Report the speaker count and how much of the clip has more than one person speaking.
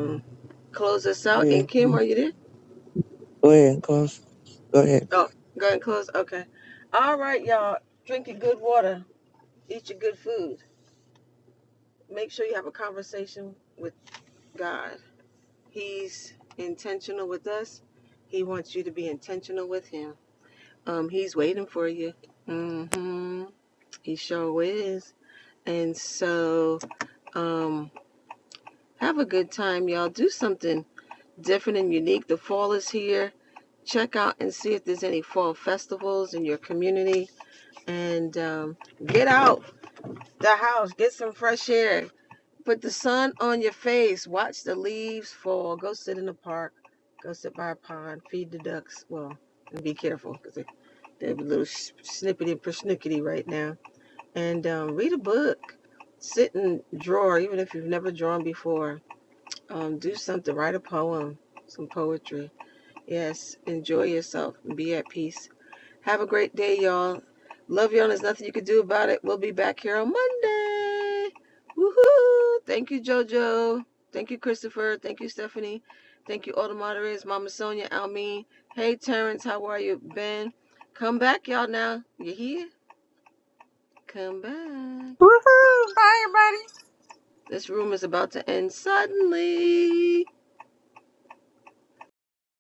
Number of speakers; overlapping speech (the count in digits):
3, under 1%